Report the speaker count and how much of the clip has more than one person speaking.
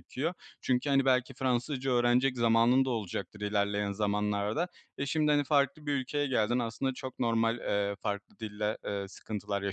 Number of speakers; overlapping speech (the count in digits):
1, no overlap